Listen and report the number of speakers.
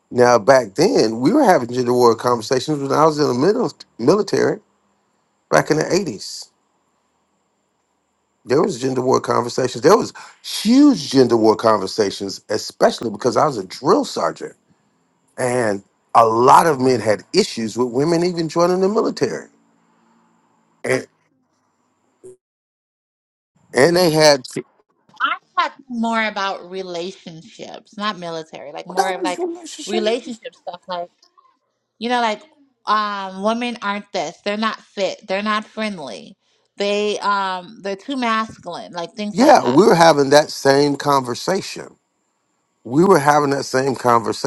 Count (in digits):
2